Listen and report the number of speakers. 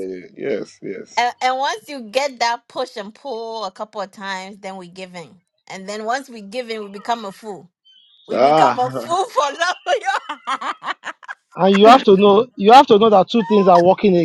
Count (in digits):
3